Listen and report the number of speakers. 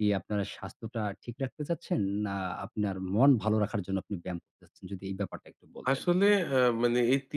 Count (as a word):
two